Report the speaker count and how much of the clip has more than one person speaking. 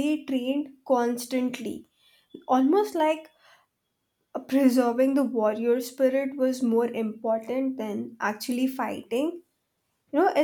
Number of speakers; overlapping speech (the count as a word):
one, no overlap